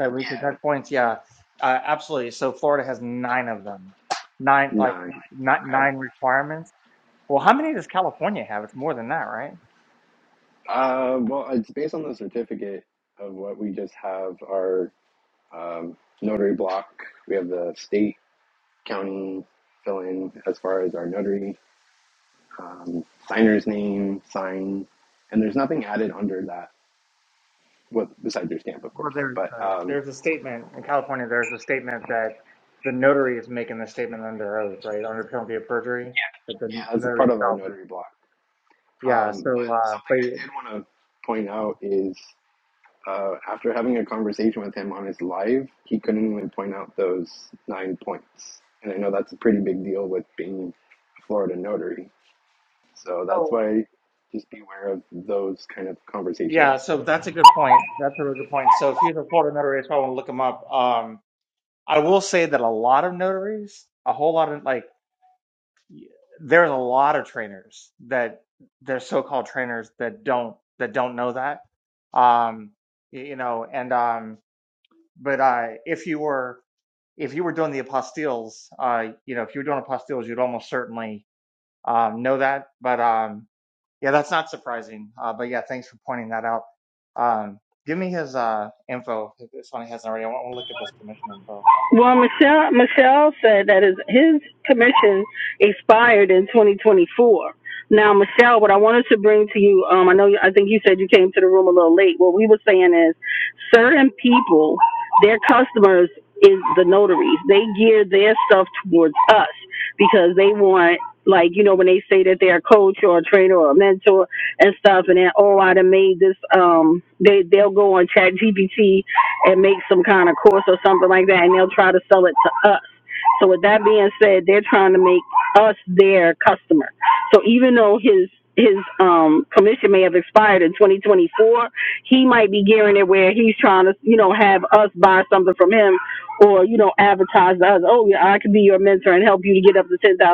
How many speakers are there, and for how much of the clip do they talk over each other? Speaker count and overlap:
three, about 3%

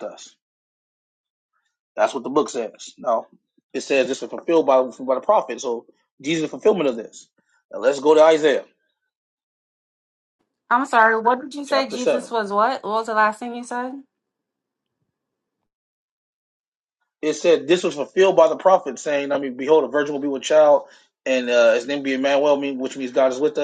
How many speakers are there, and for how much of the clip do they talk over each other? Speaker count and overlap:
two, about 2%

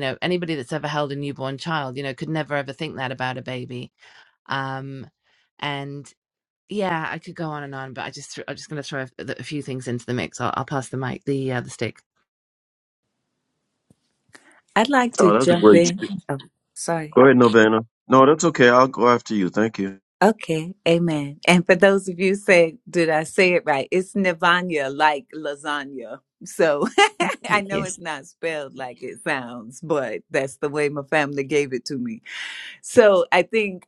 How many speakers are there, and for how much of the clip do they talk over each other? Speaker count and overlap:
three, about 3%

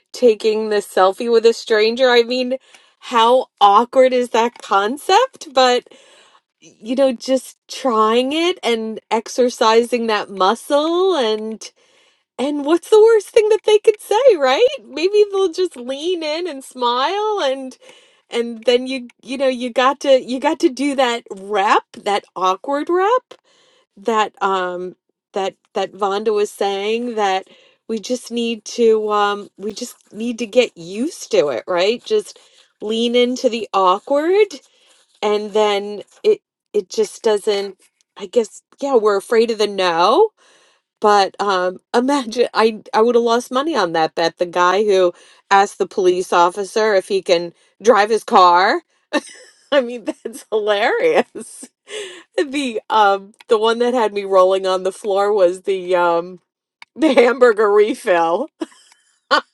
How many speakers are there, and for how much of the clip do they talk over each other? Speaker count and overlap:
one, no overlap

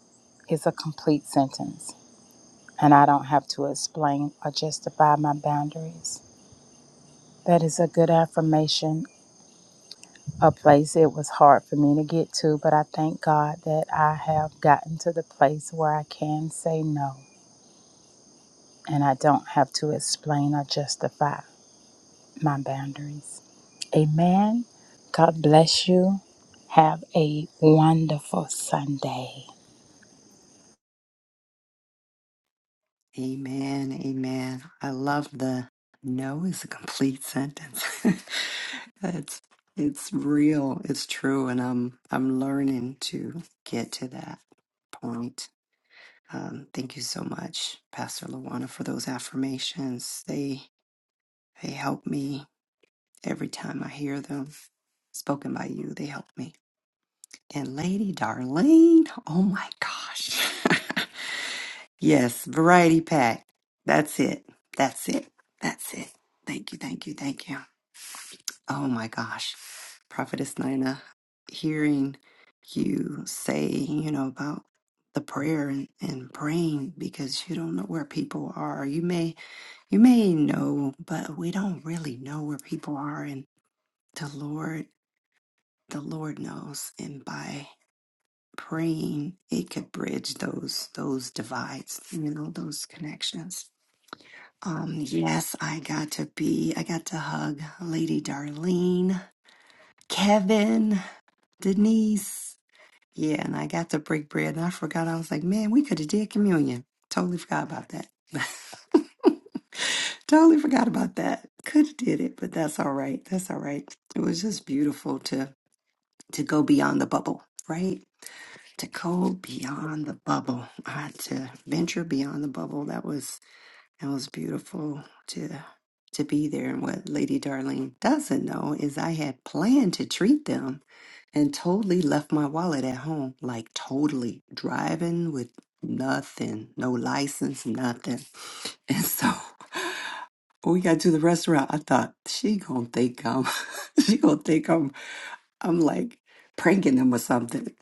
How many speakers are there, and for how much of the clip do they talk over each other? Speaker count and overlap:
two, no overlap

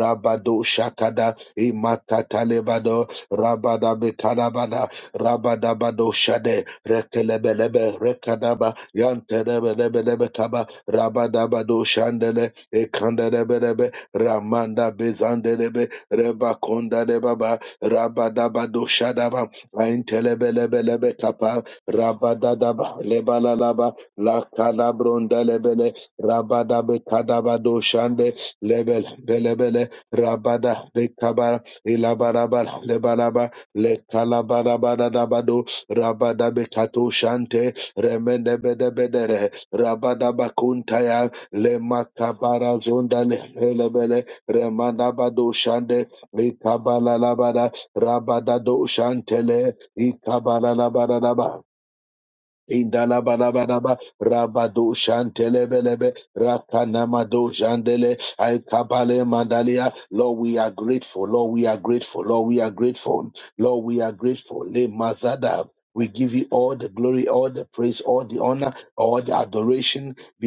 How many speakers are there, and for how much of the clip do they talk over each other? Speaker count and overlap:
one, no overlap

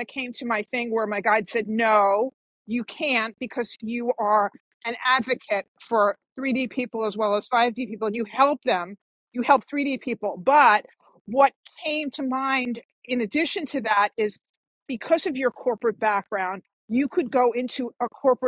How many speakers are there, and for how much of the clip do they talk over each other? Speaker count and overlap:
one, no overlap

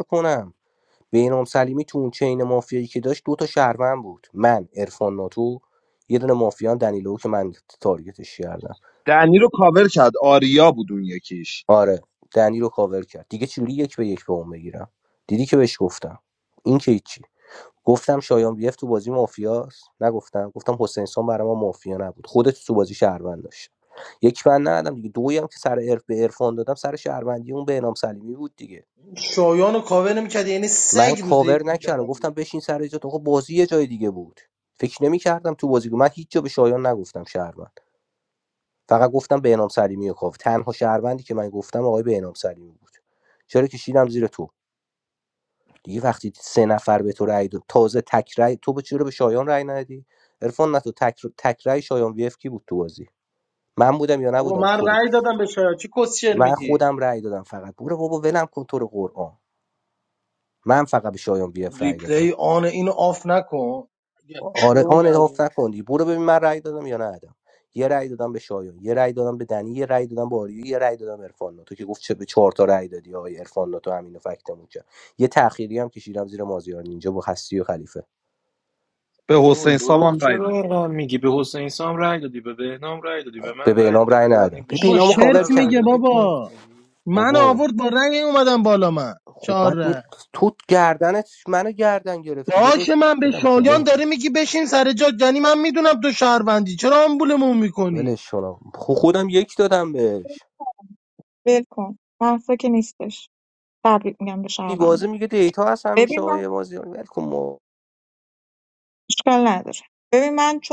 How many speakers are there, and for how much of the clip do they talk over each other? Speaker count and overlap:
five, about 10%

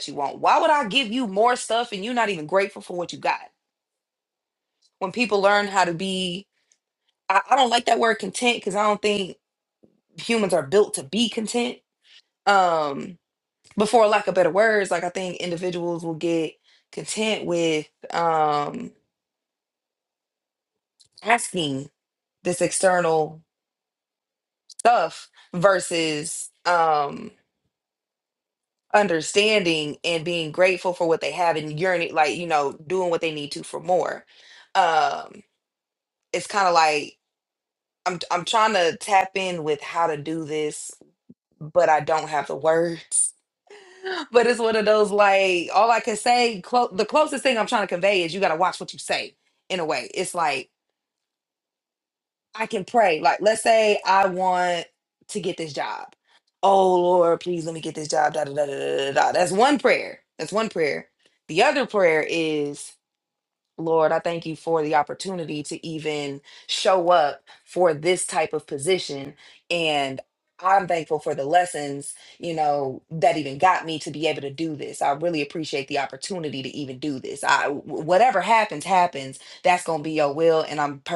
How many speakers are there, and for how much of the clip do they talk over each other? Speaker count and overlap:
one, no overlap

